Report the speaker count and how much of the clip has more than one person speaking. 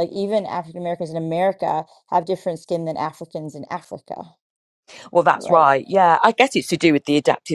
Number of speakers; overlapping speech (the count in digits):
2, about 4%